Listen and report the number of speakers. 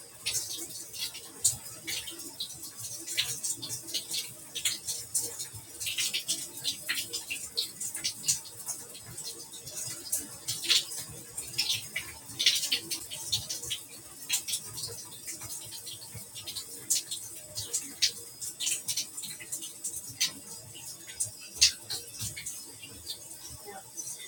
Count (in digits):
0